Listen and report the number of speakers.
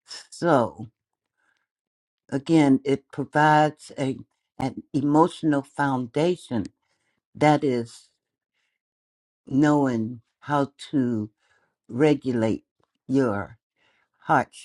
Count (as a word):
one